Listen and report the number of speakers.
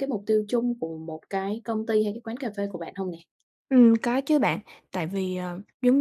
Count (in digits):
2